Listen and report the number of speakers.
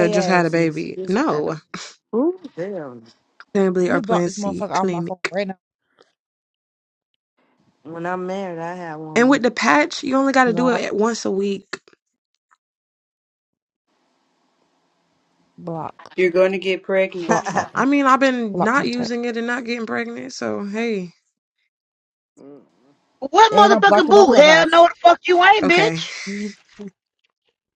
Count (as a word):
five